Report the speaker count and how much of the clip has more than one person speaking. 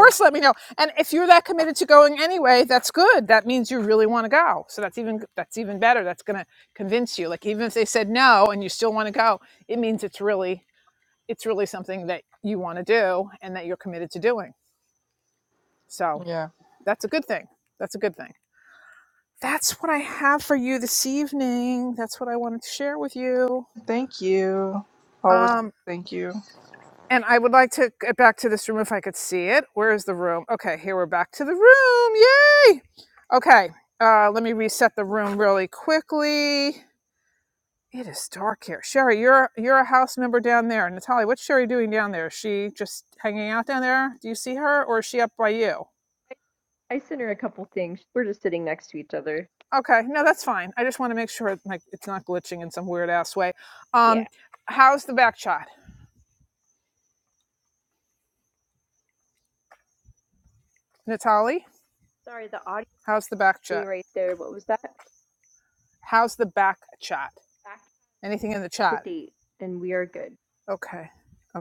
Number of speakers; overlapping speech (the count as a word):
three, about 1%